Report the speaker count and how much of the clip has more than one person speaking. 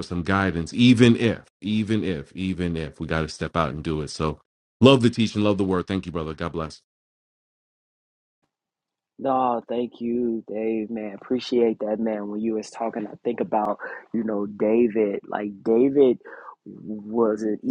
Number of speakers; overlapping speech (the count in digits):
2, no overlap